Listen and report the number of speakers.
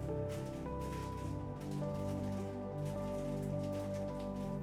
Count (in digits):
0